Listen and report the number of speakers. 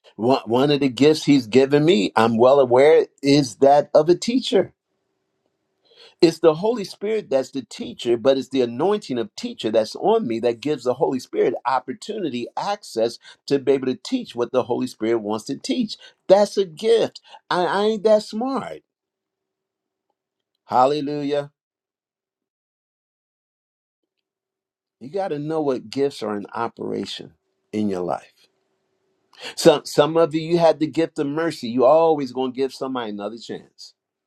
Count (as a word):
one